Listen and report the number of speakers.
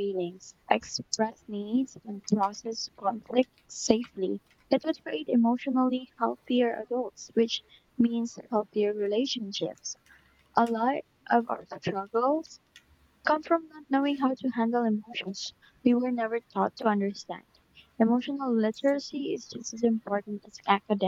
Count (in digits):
1